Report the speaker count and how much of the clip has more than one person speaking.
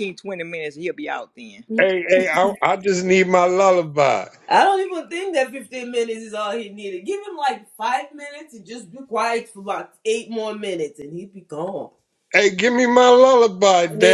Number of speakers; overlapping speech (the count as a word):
three, about 2%